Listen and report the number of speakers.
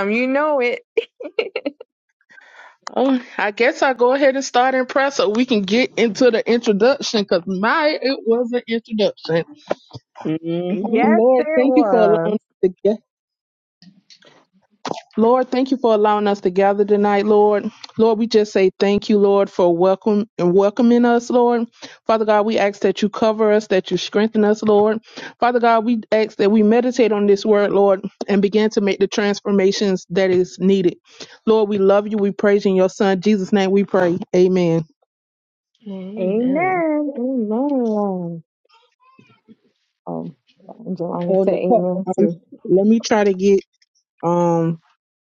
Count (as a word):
three